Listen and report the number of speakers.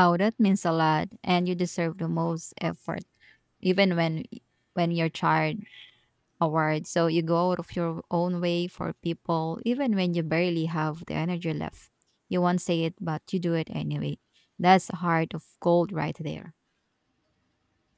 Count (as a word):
one